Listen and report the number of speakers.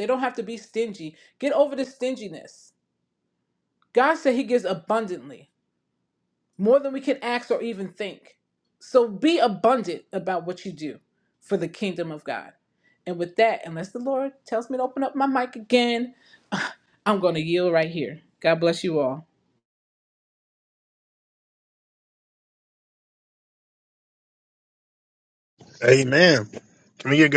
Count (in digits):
2